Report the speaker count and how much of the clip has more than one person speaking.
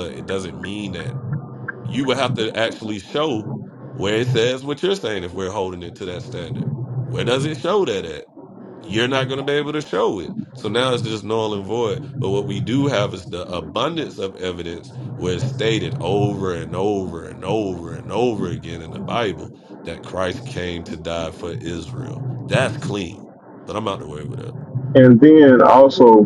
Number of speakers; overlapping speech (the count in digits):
2, no overlap